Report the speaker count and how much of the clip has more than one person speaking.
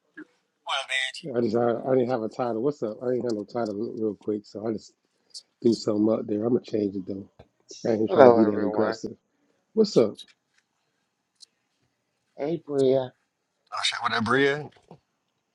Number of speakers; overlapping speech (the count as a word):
three, about 6%